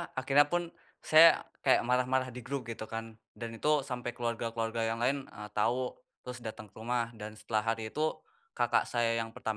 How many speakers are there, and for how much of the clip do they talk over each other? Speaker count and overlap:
1, no overlap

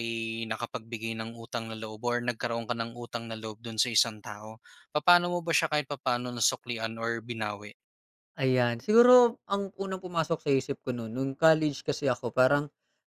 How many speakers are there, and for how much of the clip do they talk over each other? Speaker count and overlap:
2, no overlap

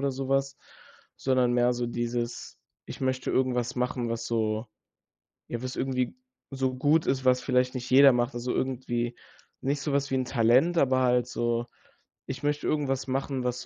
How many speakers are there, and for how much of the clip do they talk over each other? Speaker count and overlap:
1, no overlap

